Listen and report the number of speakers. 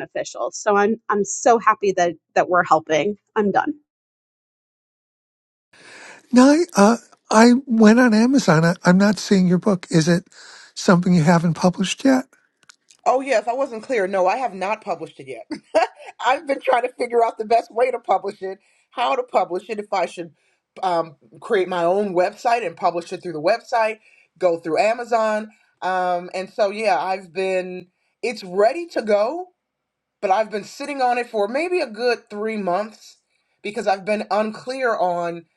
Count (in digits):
3